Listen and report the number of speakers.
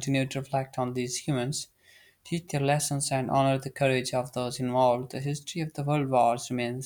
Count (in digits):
1